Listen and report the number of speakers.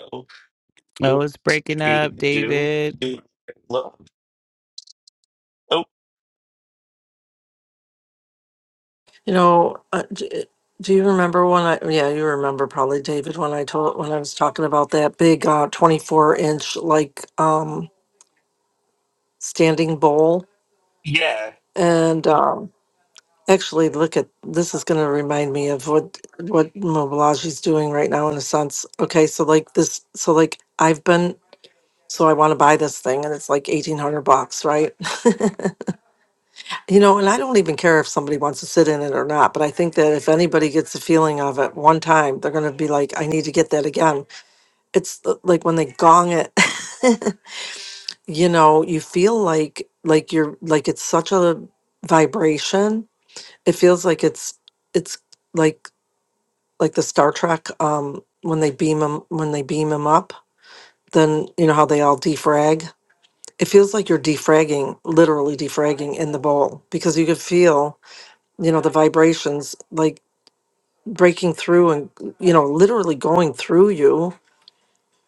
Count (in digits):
3